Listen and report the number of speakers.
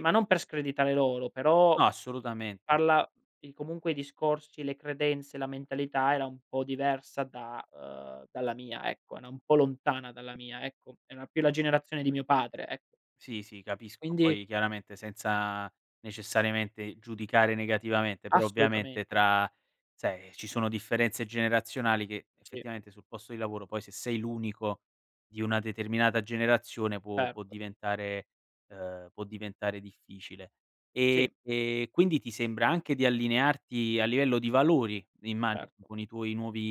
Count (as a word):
two